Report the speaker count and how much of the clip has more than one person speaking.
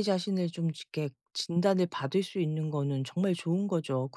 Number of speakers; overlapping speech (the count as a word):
one, no overlap